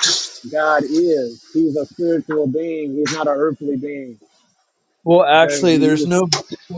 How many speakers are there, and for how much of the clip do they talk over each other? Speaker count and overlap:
2, about 11%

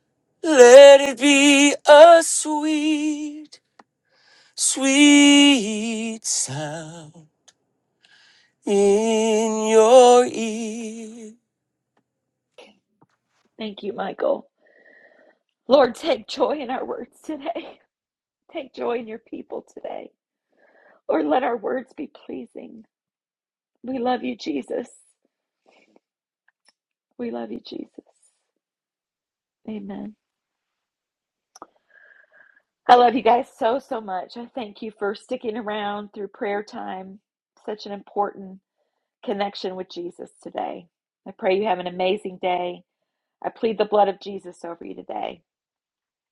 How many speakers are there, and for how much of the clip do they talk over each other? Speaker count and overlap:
2, no overlap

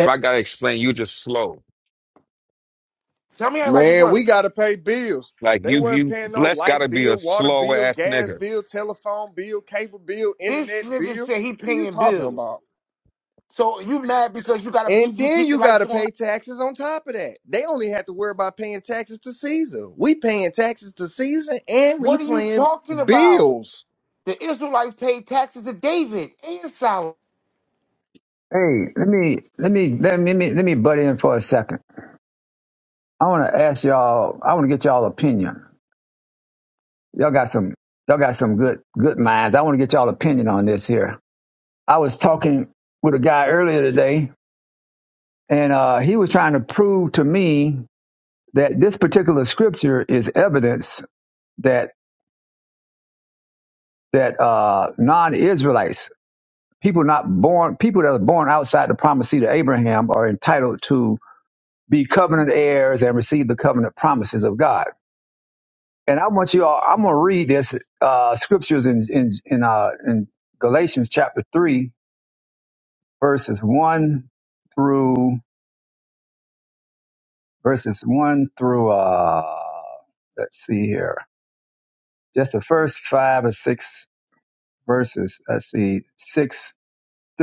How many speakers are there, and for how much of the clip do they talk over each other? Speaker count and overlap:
4, about 8%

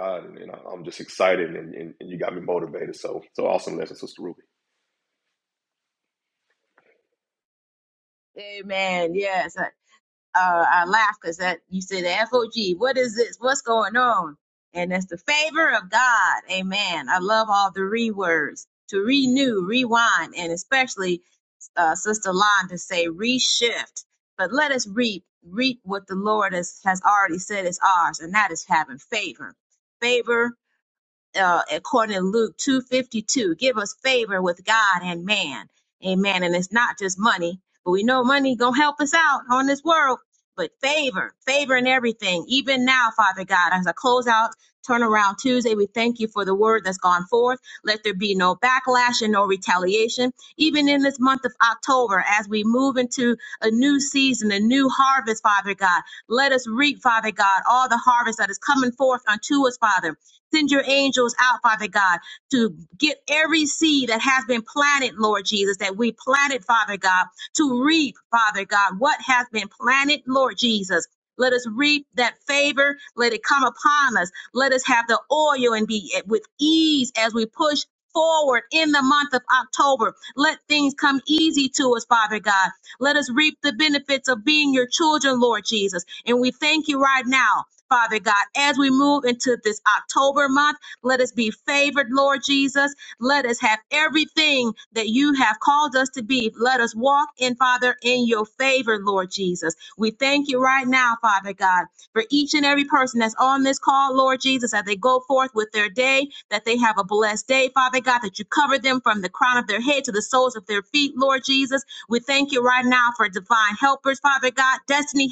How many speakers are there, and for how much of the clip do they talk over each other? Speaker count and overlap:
2, no overlap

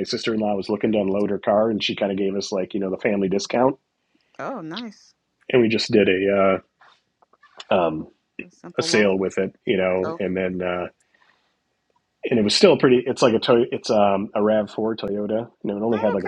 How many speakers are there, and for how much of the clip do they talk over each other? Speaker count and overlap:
2, about 7%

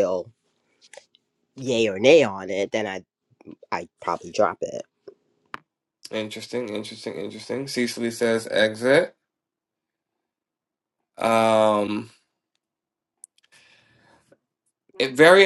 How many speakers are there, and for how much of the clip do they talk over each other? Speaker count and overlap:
2, no overlap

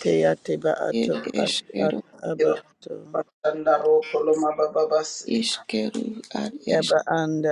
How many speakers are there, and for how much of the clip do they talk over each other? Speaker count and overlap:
3, about 21%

